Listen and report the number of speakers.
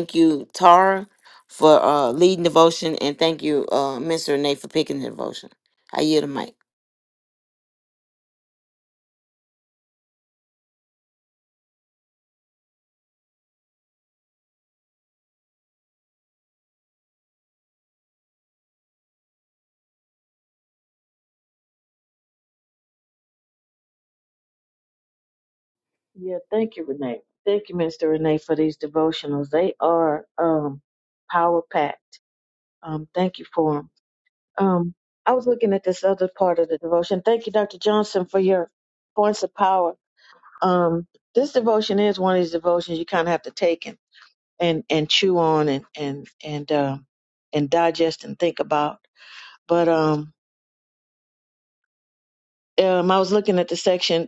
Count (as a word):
two